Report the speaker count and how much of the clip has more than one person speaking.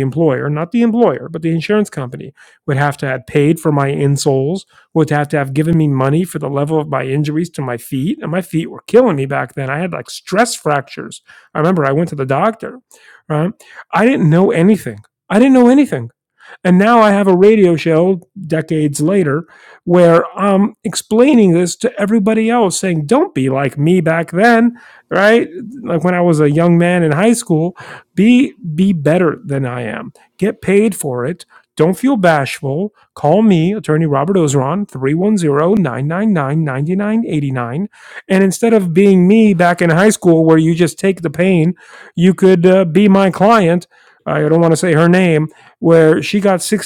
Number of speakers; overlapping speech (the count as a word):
one, no overlap